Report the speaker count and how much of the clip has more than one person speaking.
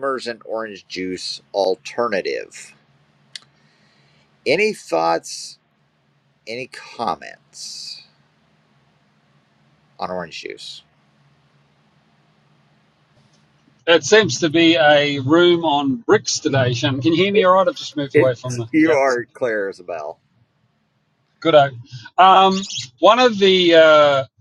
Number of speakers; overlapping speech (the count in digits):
2, about 2%